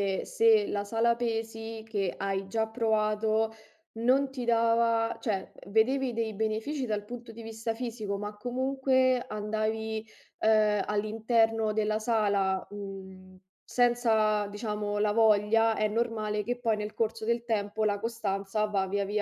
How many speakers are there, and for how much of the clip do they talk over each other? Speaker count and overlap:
one, no overlap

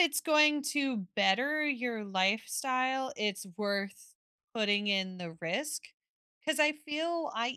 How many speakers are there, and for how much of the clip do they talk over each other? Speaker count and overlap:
one, no overlap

